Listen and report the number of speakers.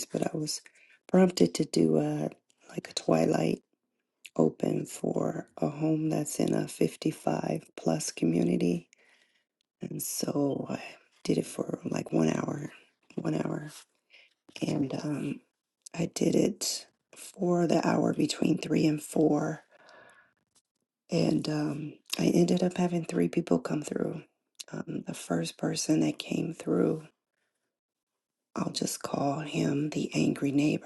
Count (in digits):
1